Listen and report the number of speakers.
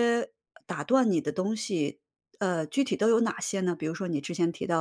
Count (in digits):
1